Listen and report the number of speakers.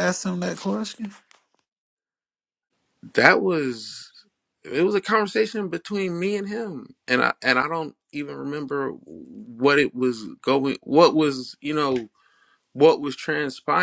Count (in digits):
2